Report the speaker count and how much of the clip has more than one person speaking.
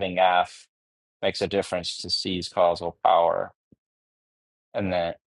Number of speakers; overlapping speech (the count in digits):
1, no overlap